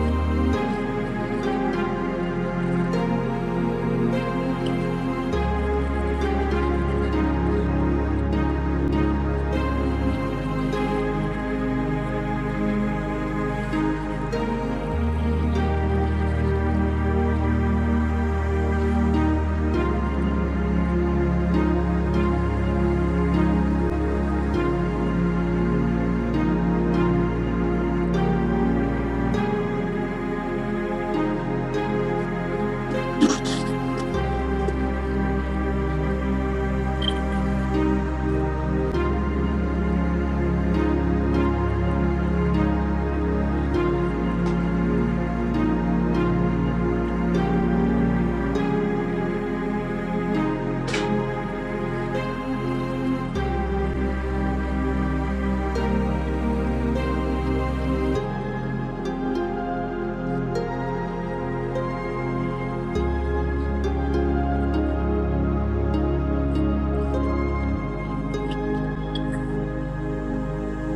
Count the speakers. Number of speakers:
0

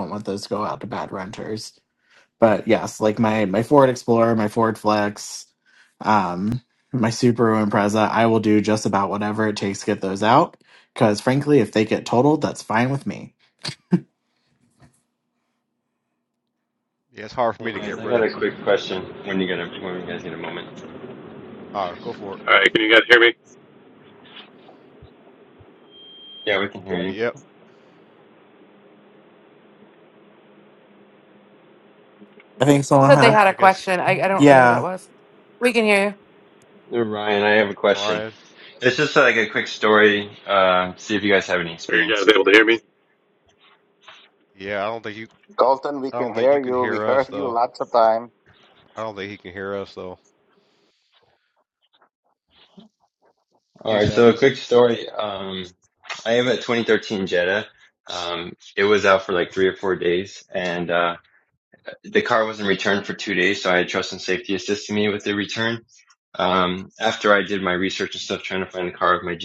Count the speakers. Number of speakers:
6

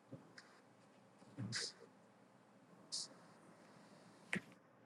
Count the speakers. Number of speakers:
0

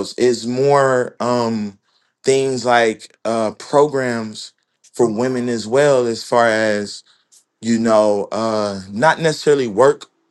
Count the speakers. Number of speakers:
1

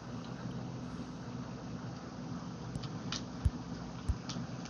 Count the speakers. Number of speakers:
0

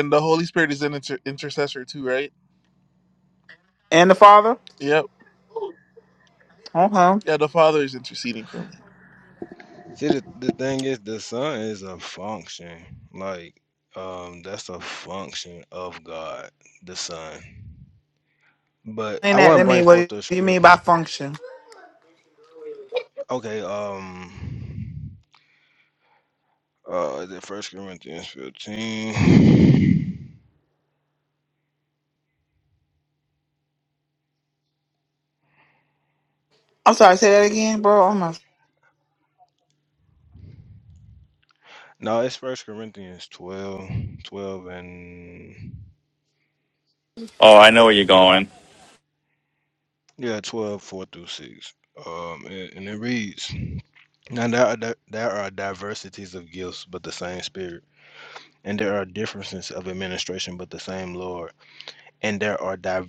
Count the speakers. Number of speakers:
4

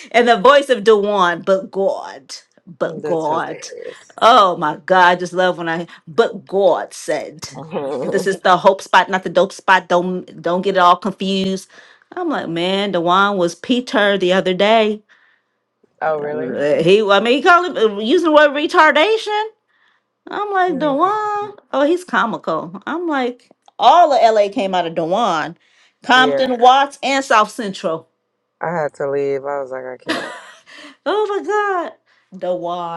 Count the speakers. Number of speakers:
2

